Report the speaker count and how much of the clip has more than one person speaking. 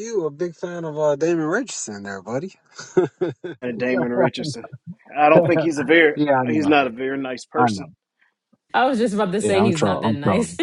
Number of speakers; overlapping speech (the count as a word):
three, about 19%